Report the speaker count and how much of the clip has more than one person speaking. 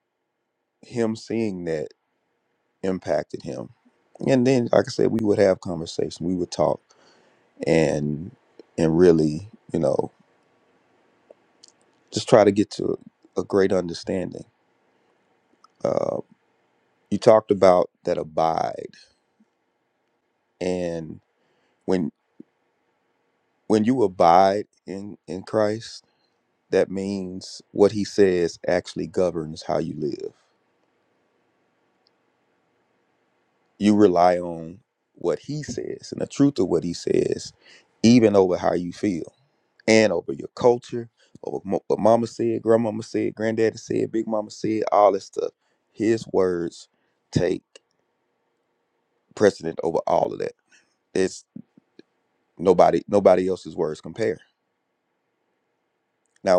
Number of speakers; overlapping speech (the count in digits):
1, no overlap